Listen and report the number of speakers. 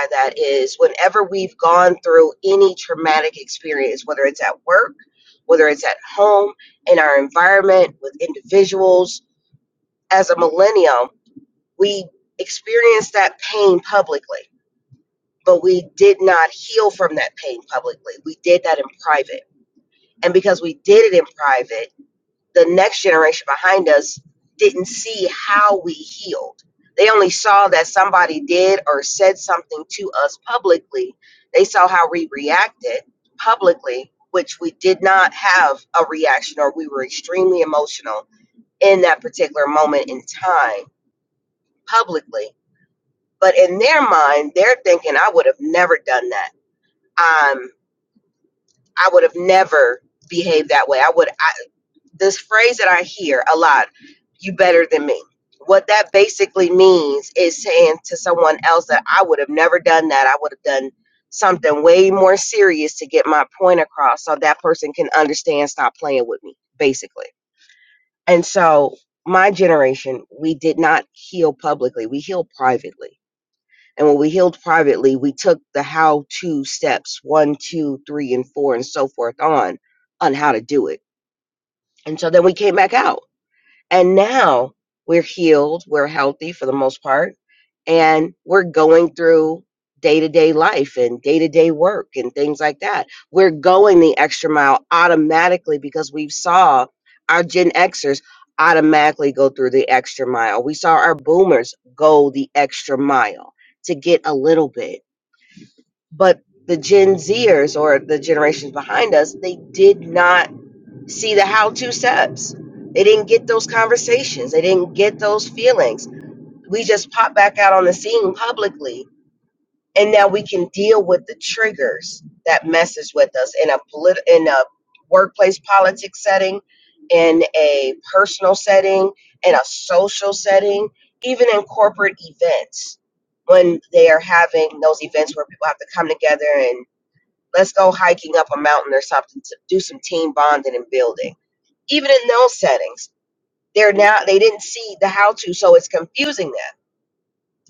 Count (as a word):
one